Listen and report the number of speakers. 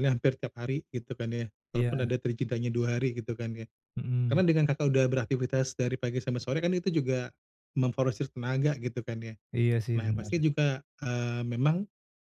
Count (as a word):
two